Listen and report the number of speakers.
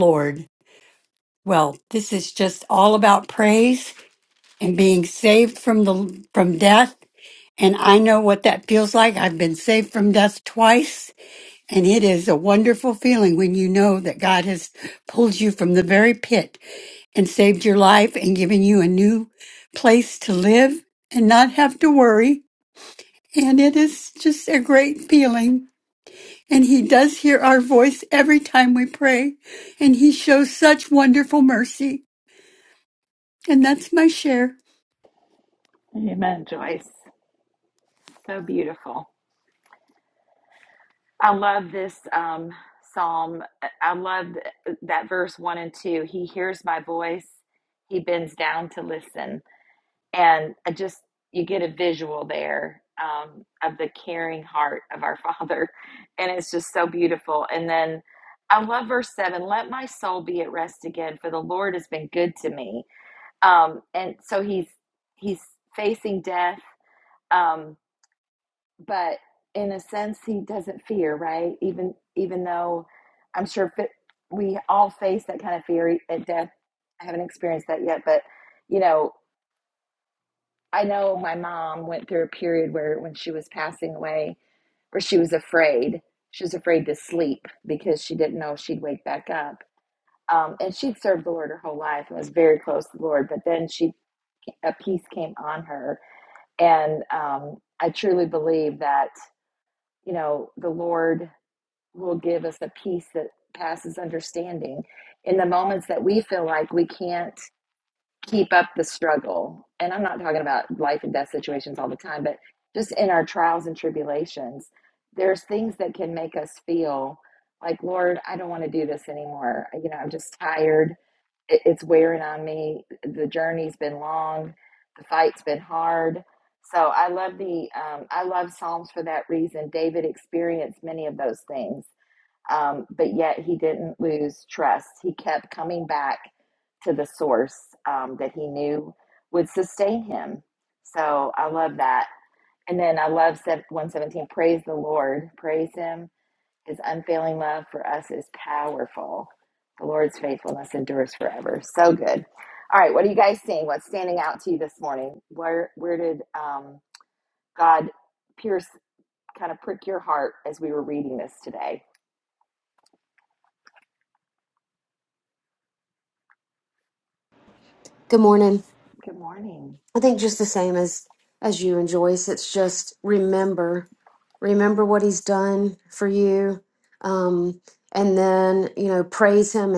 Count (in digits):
3